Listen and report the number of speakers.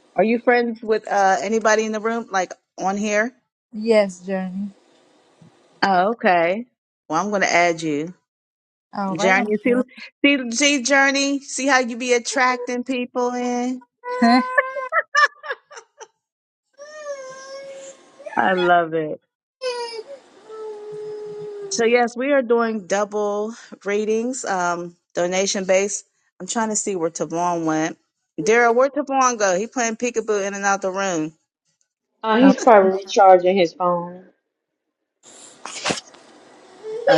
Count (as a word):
three